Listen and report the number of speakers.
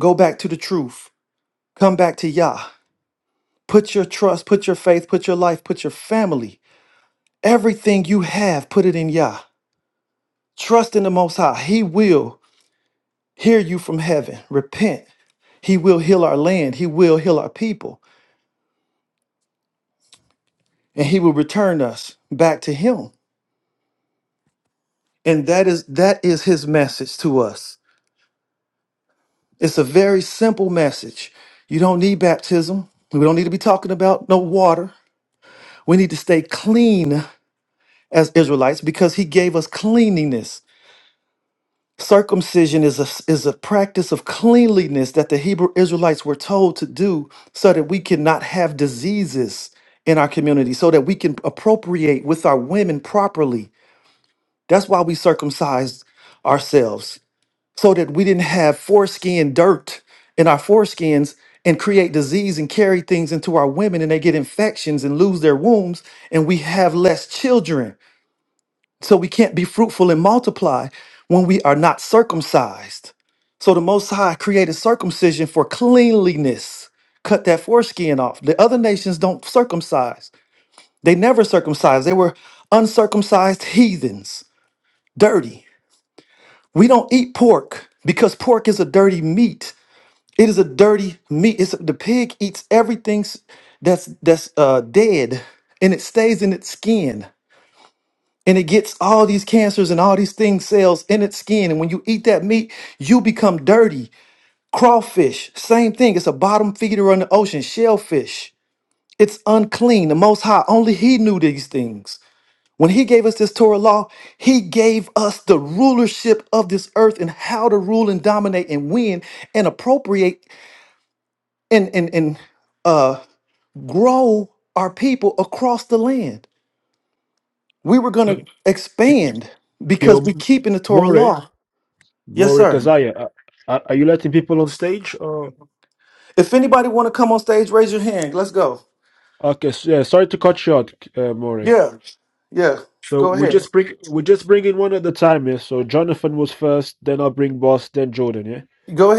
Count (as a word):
two